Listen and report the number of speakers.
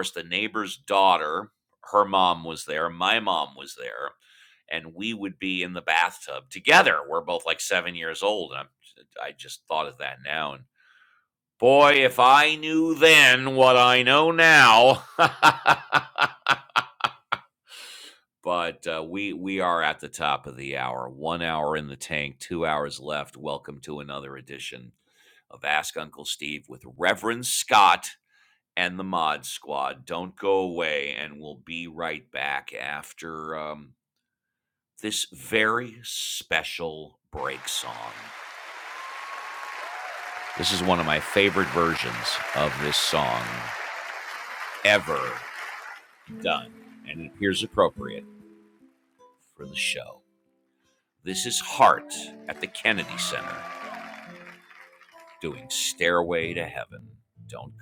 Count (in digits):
1